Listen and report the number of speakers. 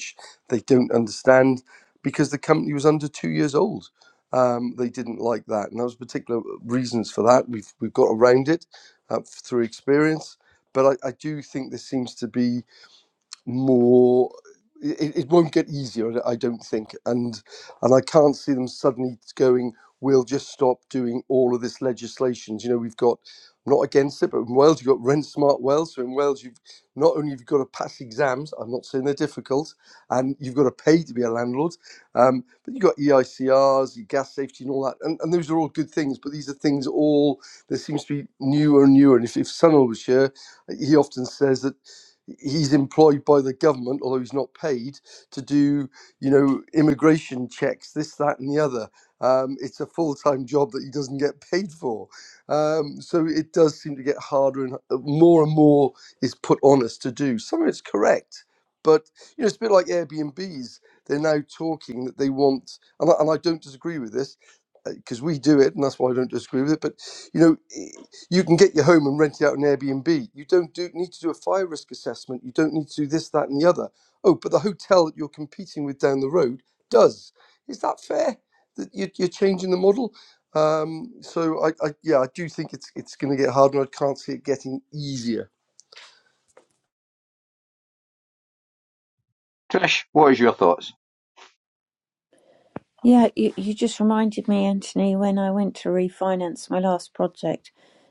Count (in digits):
3